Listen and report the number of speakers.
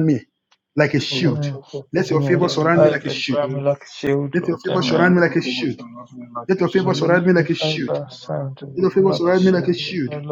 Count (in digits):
3